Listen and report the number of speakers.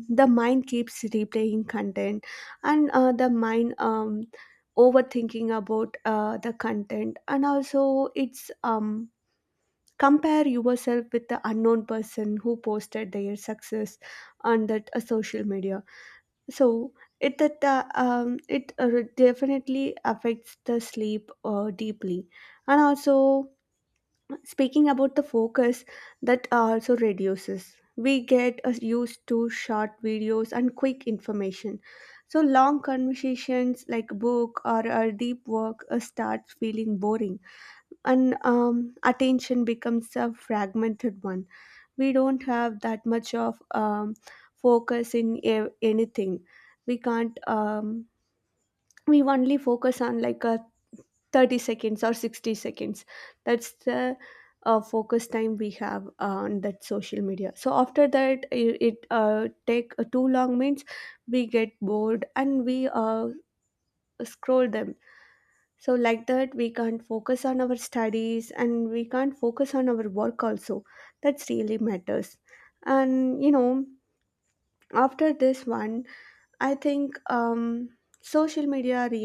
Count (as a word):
one